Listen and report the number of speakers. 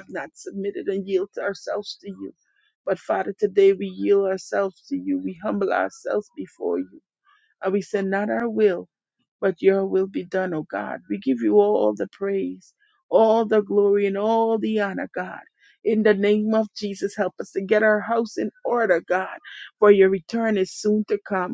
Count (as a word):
one